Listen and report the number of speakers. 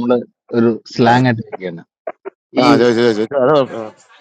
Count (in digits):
2